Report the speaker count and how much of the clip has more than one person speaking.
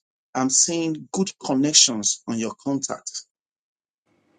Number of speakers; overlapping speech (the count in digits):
1, no overlap